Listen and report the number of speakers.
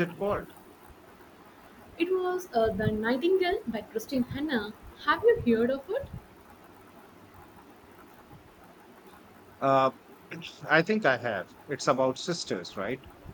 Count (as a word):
two